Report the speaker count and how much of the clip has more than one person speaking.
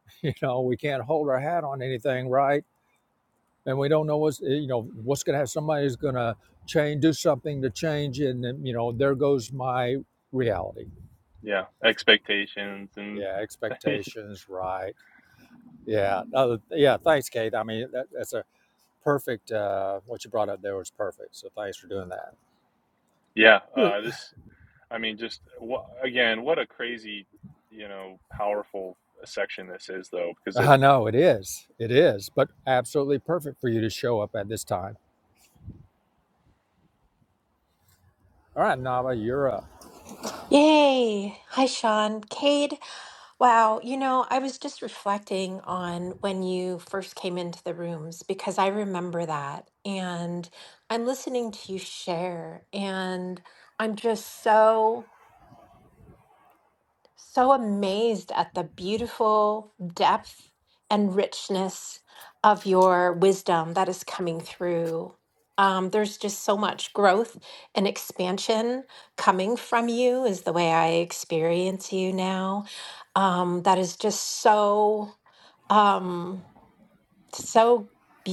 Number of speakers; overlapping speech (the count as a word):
three, under 1%